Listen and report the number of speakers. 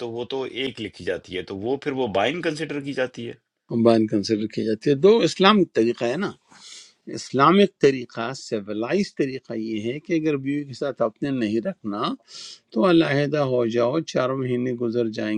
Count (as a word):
two